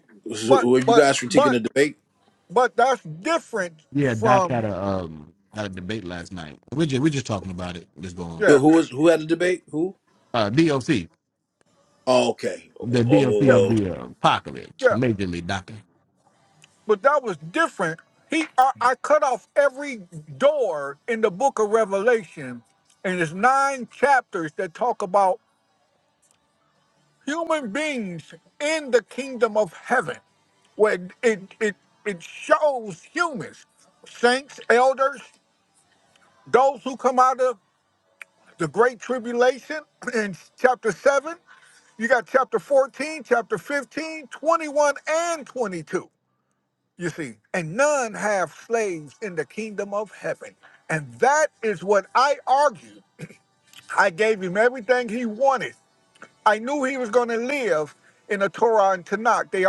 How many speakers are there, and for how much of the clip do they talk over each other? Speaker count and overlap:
3, about 5%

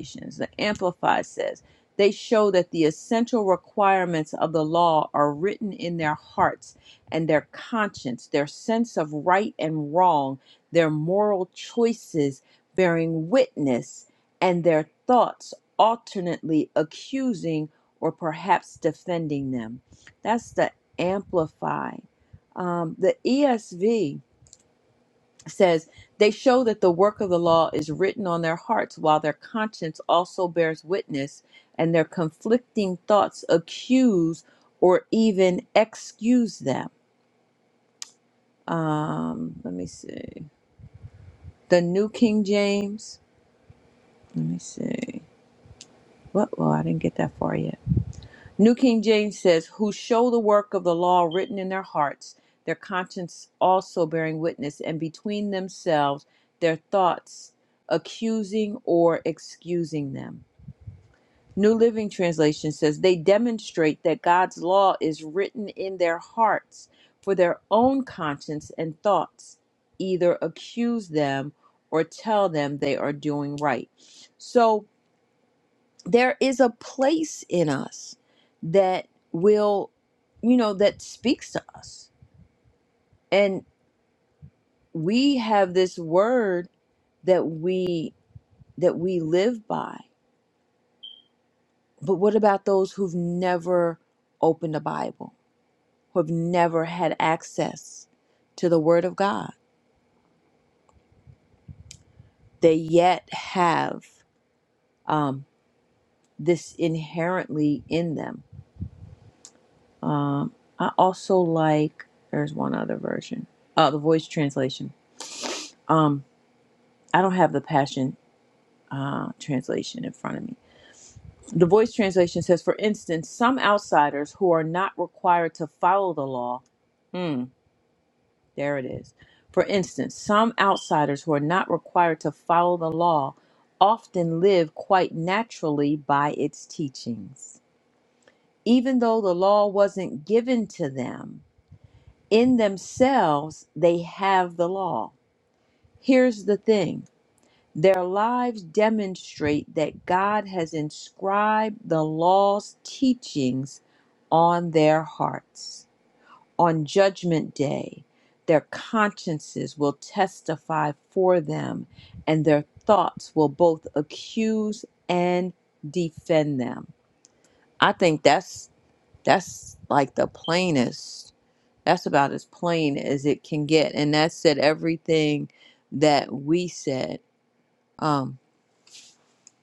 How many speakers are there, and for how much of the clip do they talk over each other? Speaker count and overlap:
1, no overlap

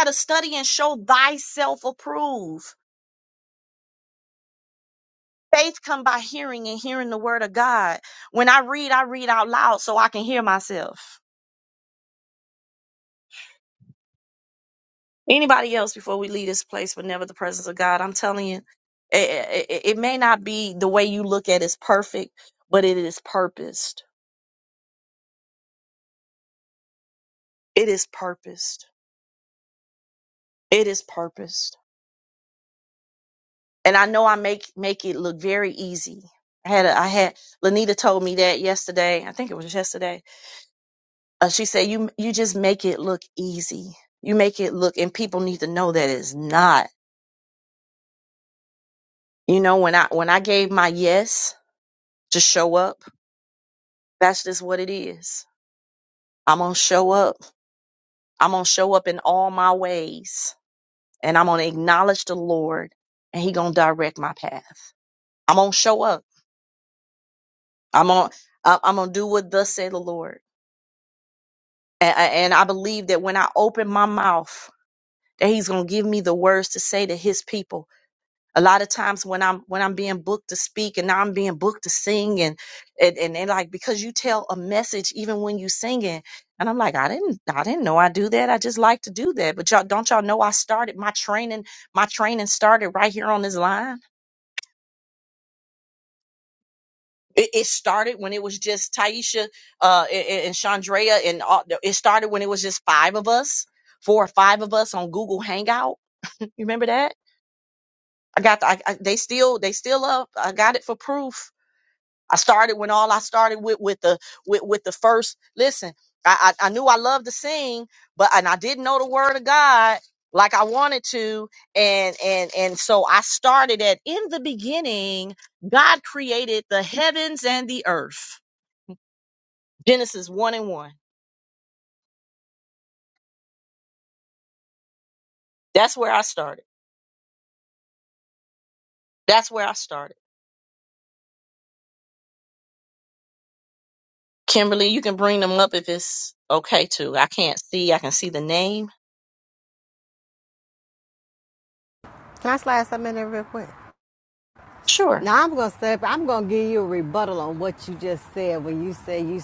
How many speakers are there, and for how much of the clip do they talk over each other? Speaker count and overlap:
2, under 1%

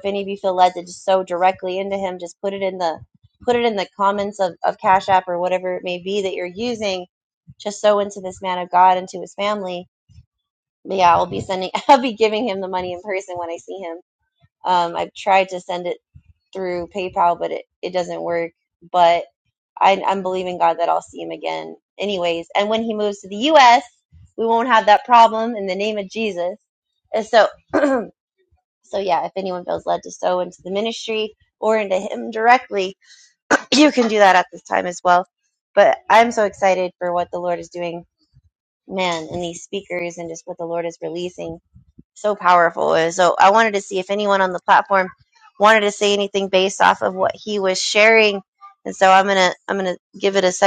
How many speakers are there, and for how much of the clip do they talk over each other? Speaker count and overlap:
1, no overlap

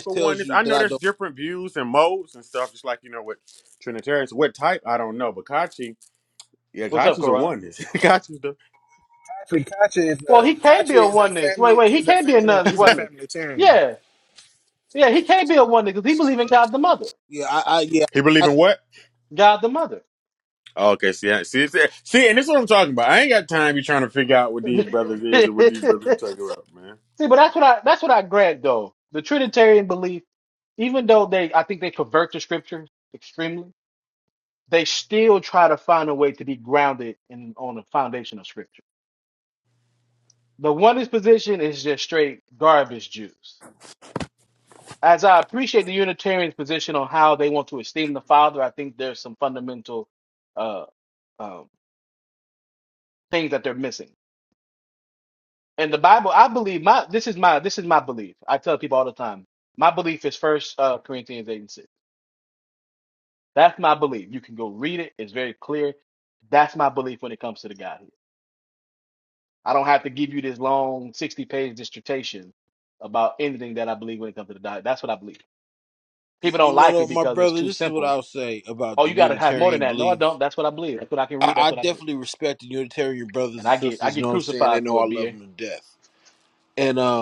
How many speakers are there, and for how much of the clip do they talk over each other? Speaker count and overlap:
4, about 11%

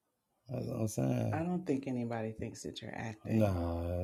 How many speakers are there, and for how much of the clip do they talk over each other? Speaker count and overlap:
2, about 9%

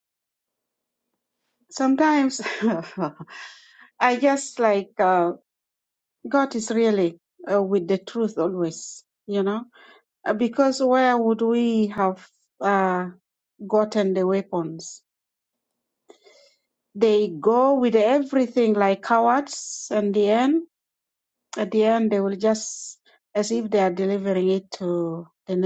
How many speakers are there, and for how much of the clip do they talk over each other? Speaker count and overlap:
1, no overlap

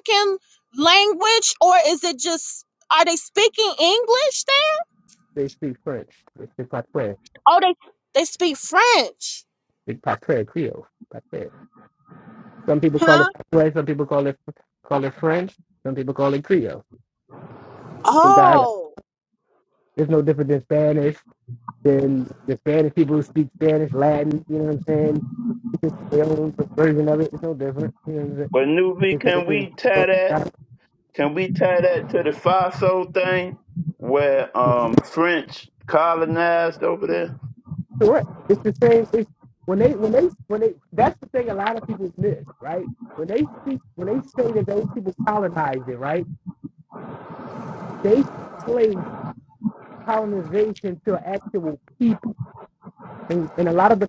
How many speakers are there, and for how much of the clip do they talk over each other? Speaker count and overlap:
3, about 4%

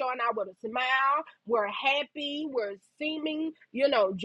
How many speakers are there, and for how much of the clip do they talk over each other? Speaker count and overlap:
1, no overlap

